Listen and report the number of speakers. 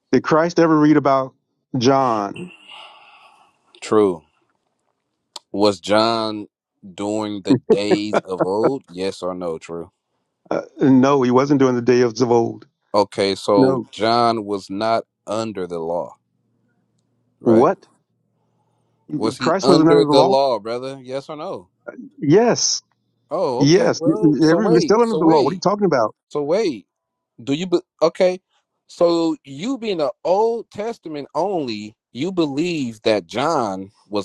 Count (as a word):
two